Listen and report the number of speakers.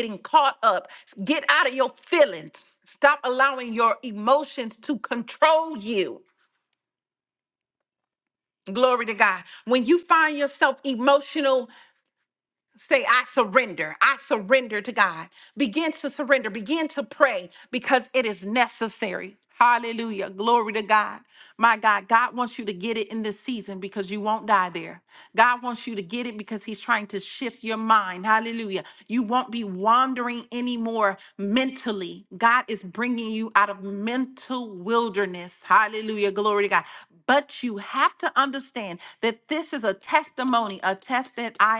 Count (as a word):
one